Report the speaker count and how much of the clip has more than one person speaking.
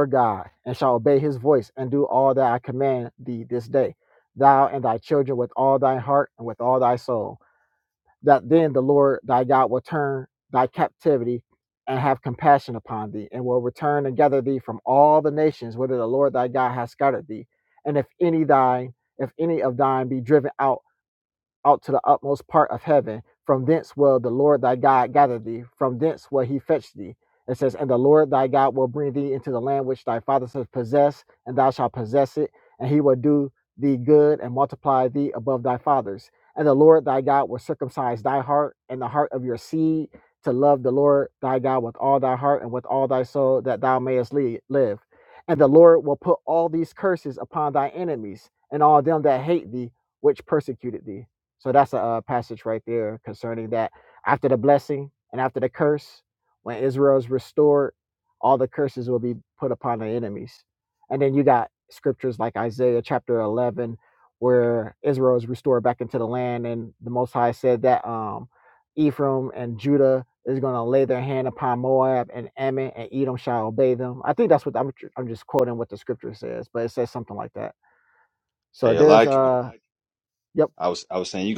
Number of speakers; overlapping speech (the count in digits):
2, about 1%